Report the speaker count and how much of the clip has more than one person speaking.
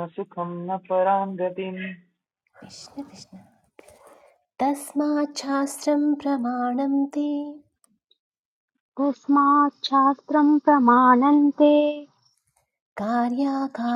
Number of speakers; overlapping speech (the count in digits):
3, no overlap